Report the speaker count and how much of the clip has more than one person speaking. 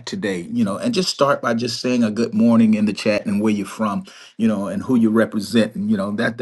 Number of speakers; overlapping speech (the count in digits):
1, no overlap